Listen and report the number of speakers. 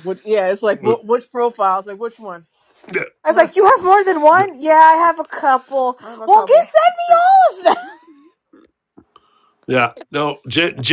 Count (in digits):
3